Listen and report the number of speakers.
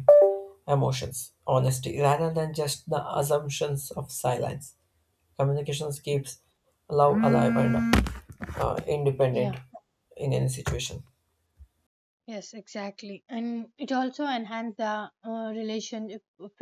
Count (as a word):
two